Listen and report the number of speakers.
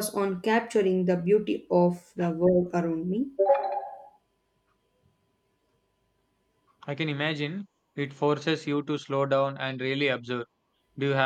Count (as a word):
two